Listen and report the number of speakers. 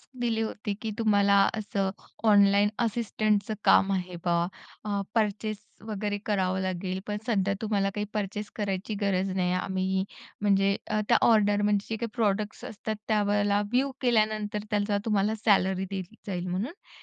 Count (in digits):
1